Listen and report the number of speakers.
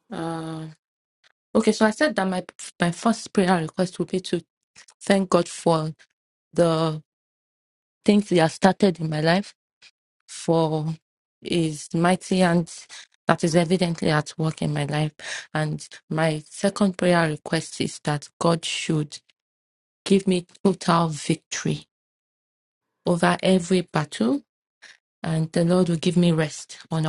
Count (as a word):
one